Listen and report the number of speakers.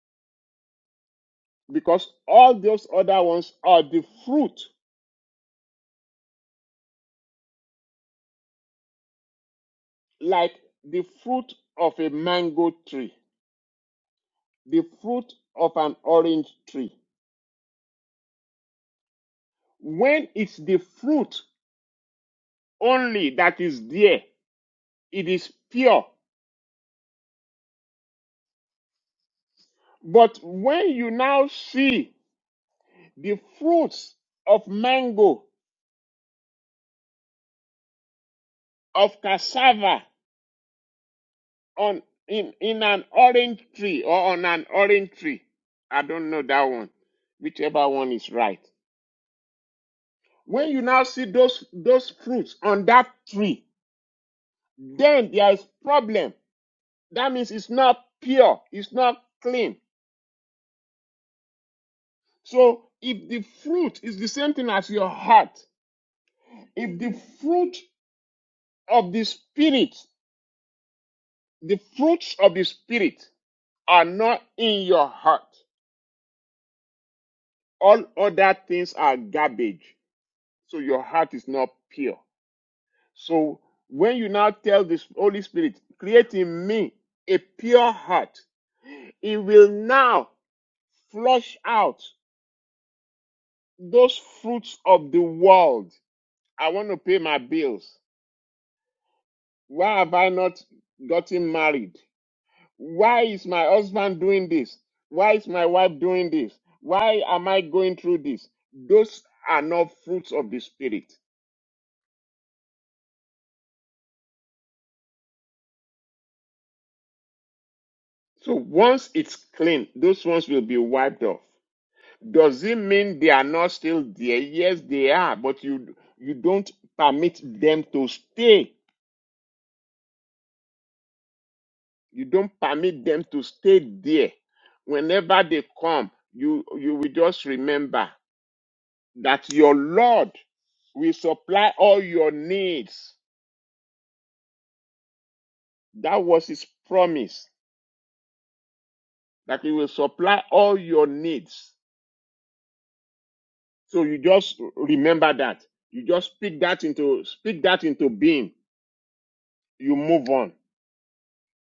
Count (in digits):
1